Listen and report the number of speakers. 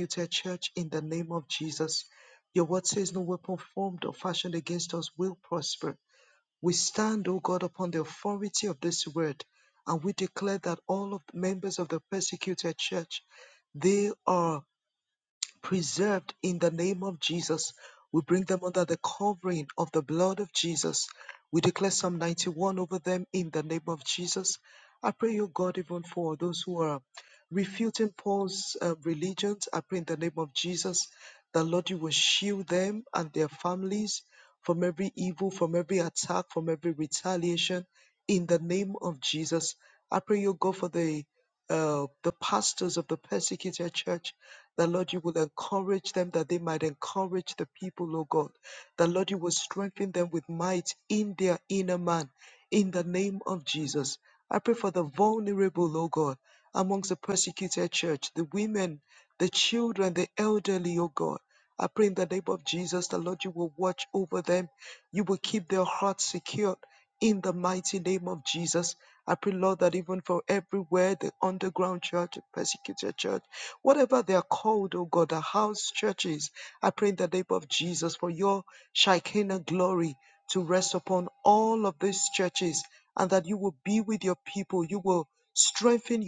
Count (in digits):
1